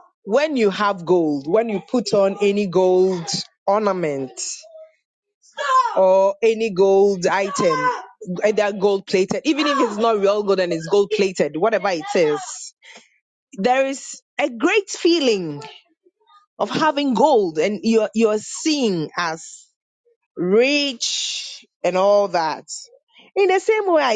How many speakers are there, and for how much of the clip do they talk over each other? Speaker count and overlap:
one, no overlap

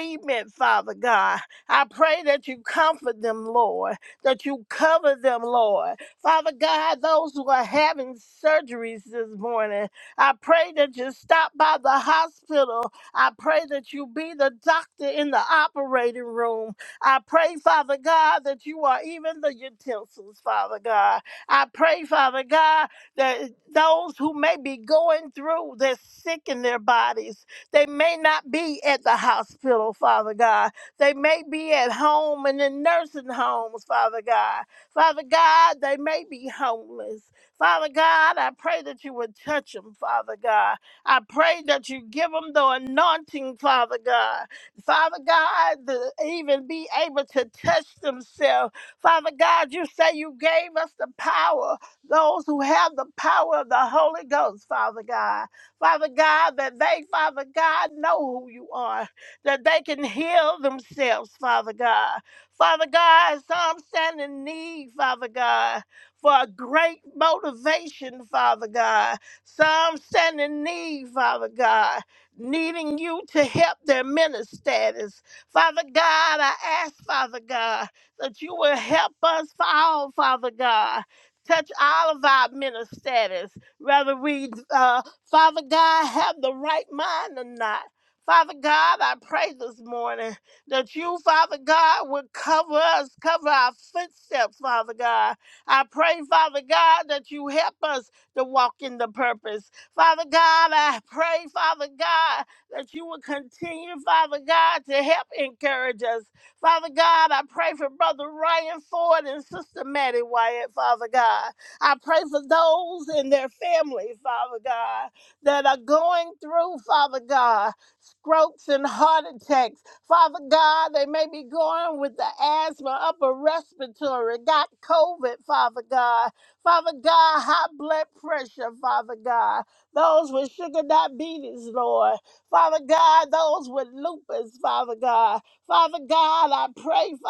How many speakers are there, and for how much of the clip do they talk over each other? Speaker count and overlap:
one, no overlap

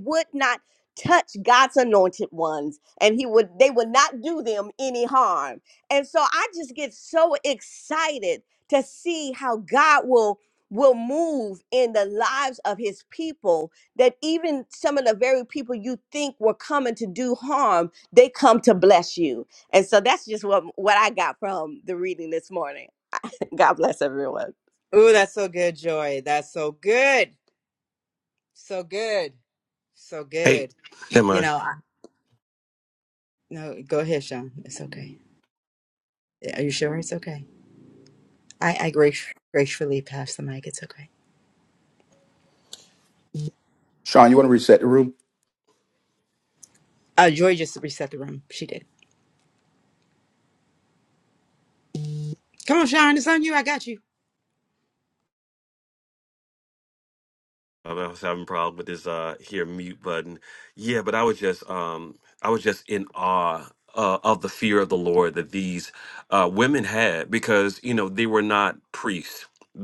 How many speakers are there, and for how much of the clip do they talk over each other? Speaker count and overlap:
four, about 1%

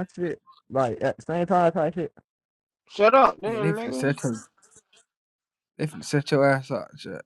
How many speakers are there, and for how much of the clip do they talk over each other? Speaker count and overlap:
three, about 9%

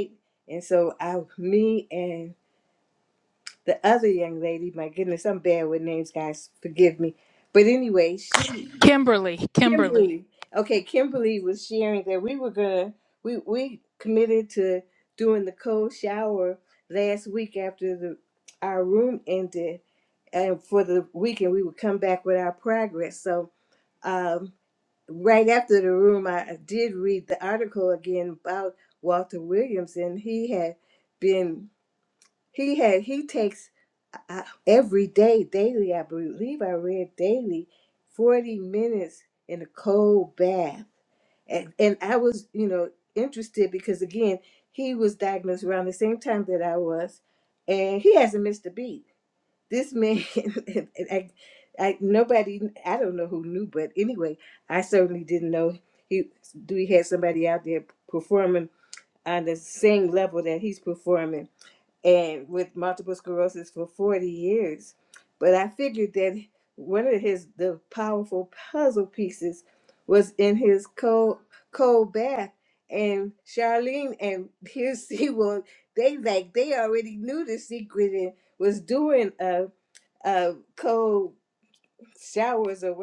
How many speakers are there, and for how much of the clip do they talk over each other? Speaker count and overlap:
two, about 1%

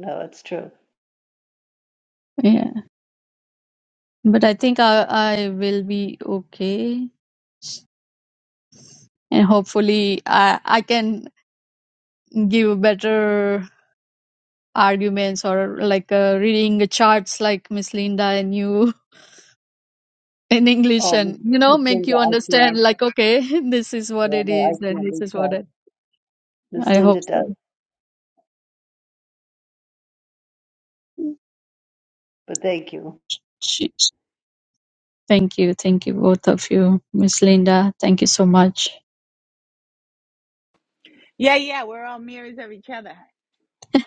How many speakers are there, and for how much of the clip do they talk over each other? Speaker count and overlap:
three, about 9%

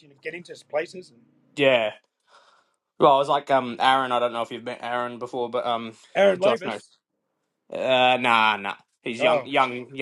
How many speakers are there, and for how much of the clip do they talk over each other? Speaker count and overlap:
two, about 7%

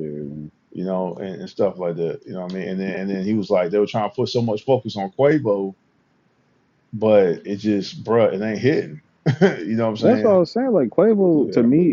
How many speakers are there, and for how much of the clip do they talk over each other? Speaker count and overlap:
two, about 6%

